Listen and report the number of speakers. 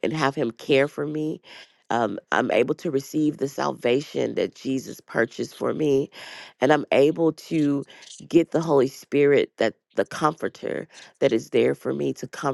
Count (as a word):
one